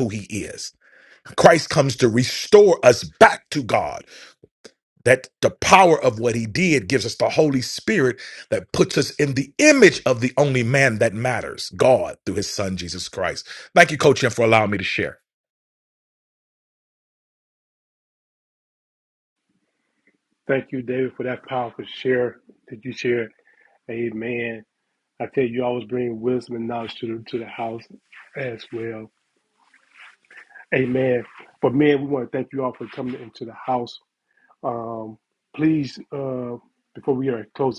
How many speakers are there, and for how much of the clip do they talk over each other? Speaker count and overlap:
2, no overlap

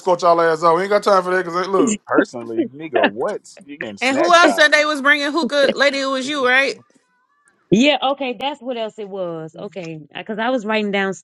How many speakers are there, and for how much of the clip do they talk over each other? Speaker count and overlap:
4, about 6%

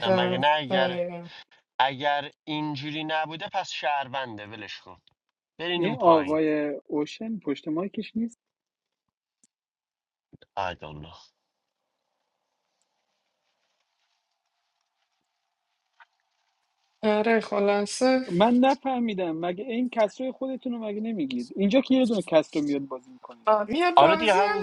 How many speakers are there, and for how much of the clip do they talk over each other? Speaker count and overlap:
3, about 9%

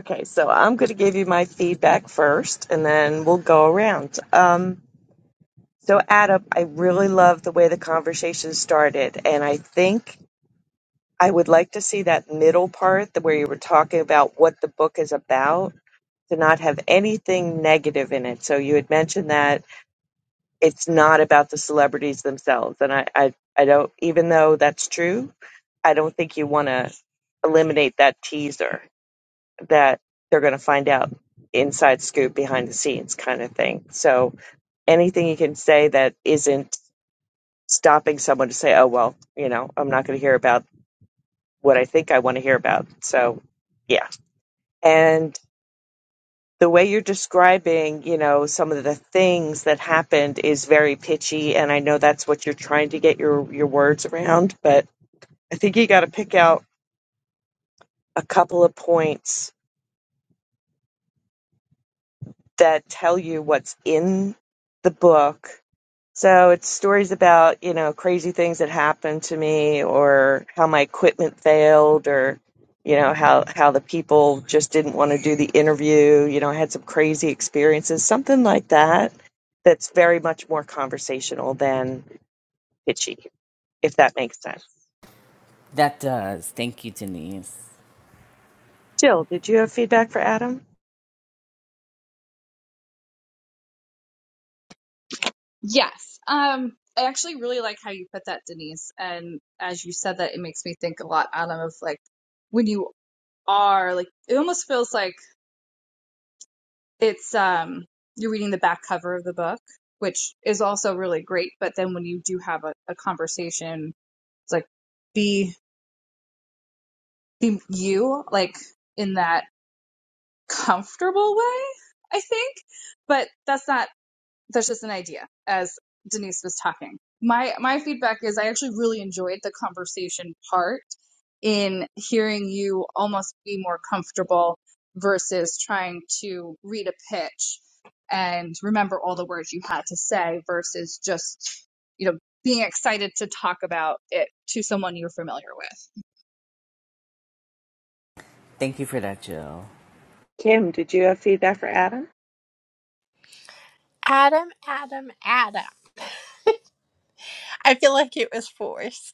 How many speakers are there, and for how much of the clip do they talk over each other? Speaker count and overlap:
4, no overlap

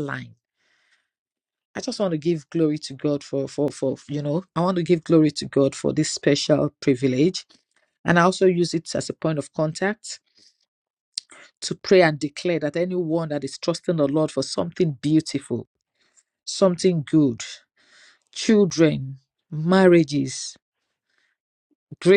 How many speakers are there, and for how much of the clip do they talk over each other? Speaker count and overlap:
1, no overlap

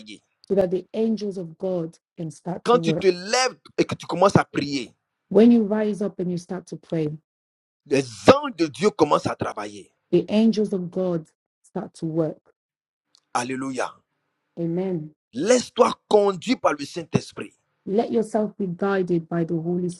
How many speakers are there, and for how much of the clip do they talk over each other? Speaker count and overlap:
2, about 2%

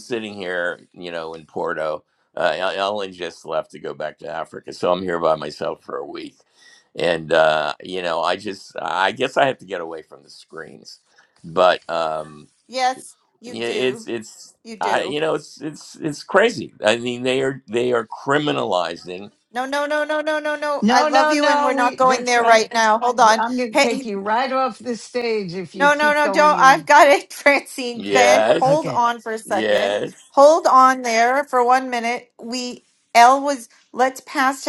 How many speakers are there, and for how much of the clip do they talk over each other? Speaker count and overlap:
3, about 16%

